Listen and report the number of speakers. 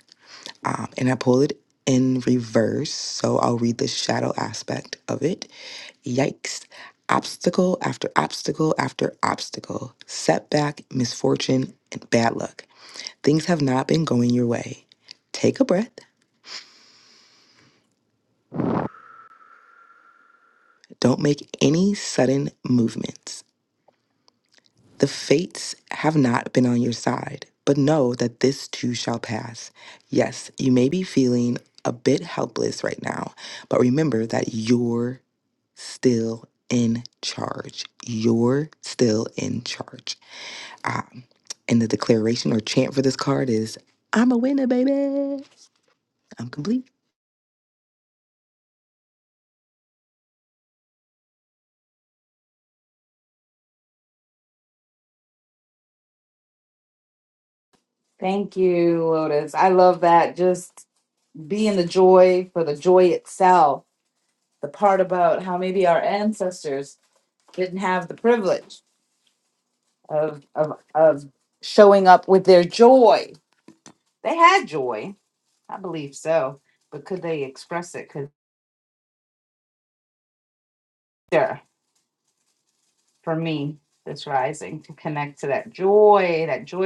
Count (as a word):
two